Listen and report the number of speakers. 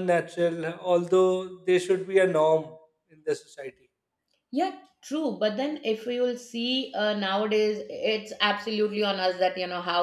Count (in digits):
2